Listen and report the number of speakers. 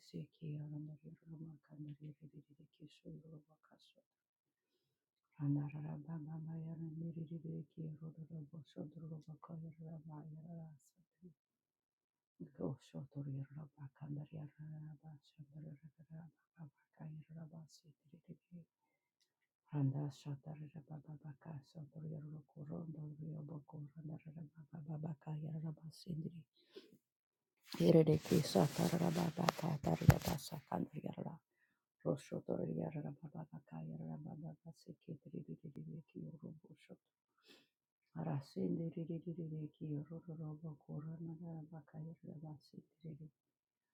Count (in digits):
1